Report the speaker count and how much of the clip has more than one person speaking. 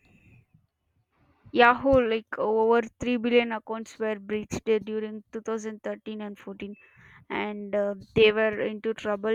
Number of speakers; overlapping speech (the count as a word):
one, no overlap